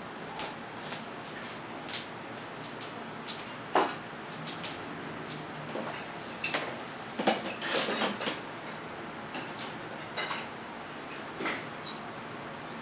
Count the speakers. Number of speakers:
0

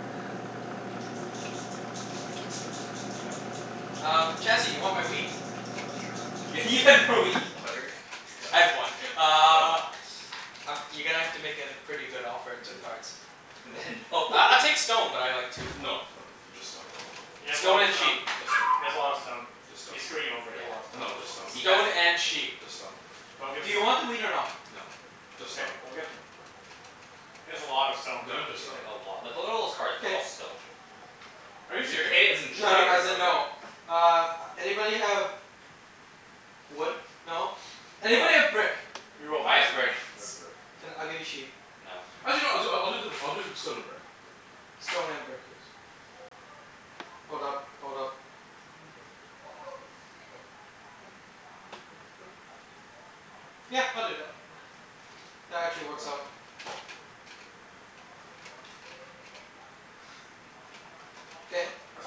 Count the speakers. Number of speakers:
4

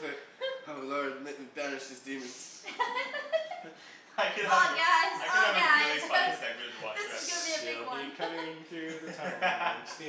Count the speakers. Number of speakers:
4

